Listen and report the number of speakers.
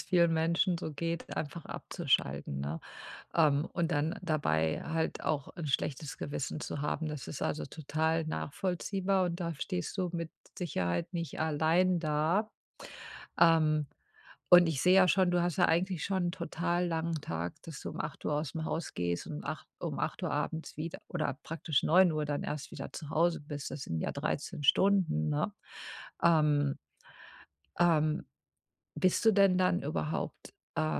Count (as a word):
one